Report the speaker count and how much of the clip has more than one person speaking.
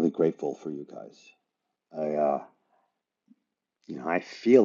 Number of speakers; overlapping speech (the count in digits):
1, no overlap